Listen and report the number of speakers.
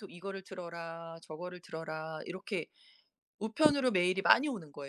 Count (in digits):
1